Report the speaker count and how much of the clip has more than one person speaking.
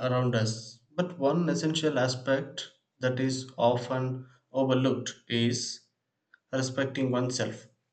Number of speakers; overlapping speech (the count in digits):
1, no overlap